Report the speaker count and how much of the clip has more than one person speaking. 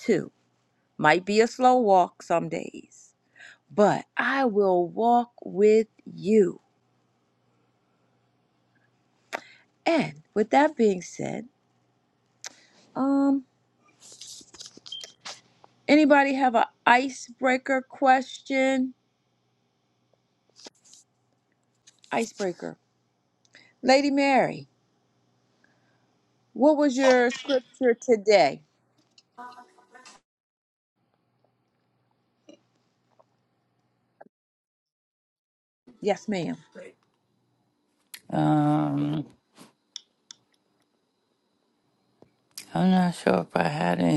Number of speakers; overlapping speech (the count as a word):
two, no overlap